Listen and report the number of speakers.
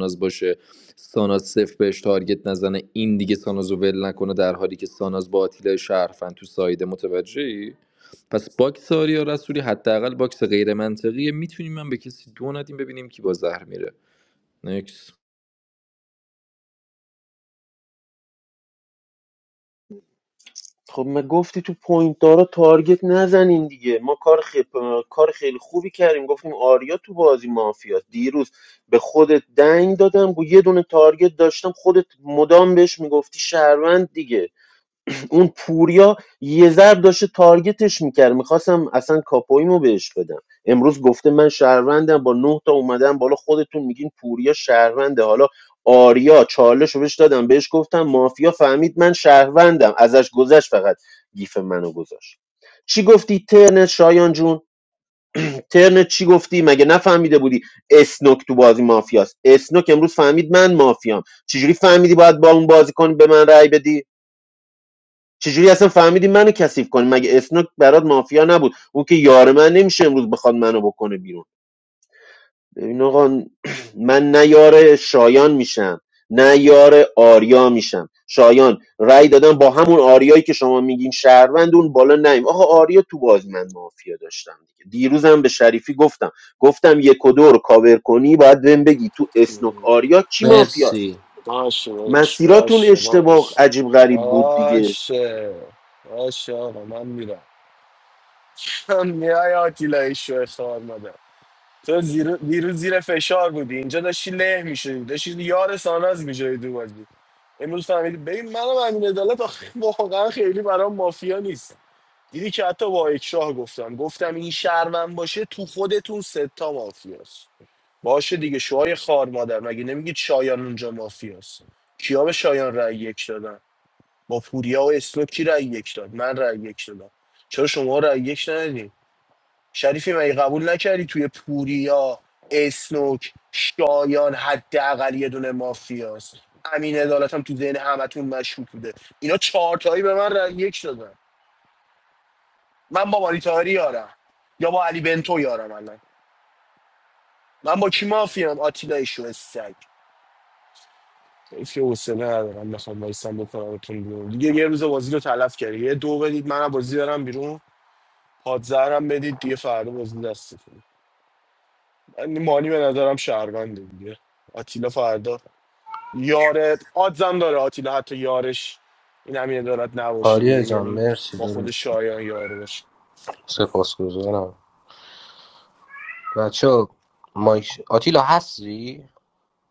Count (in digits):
4